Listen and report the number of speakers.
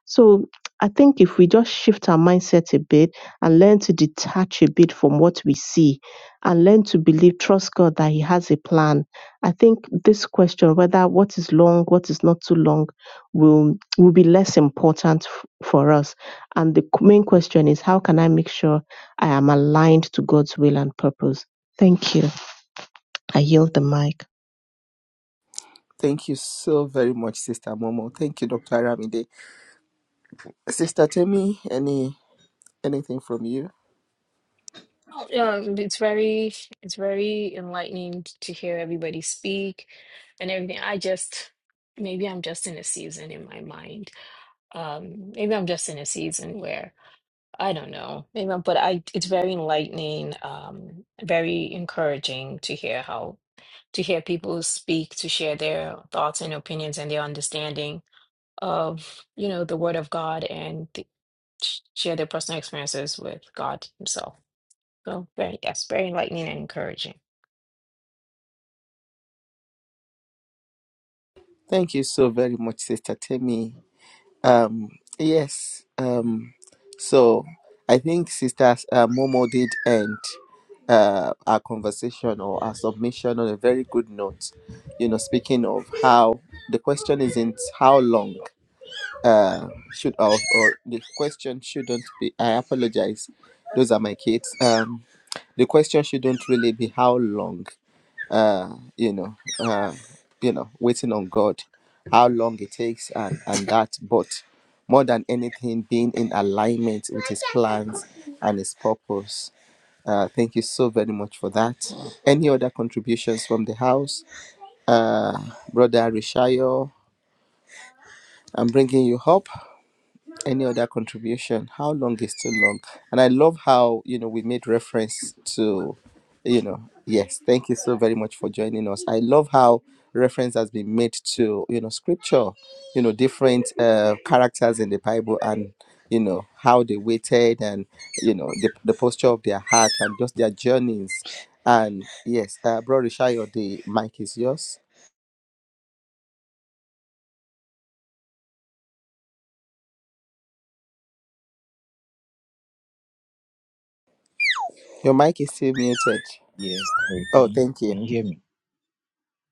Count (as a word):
four